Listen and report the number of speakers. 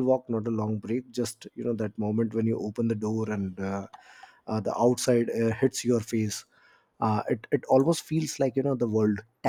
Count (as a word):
one